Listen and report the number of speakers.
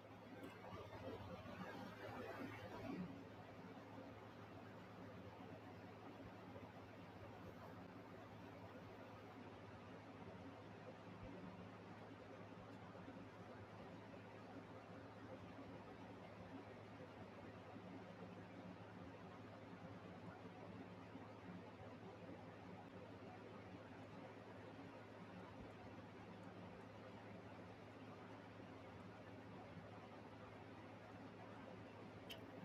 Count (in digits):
0